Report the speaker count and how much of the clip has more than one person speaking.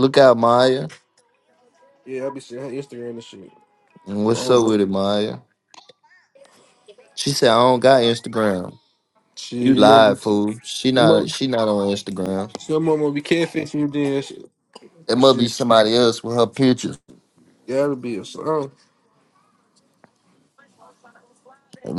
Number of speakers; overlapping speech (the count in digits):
2, about 8%